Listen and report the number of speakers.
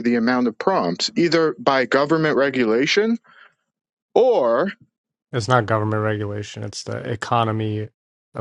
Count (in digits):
2